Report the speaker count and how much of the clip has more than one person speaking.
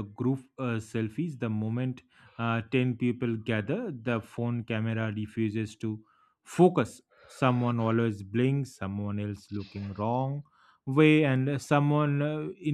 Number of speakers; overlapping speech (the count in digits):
1, no overlap